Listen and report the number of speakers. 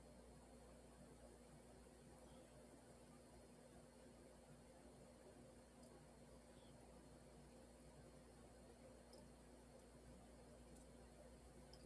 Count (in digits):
0